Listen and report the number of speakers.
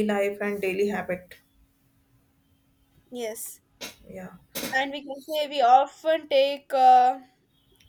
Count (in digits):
2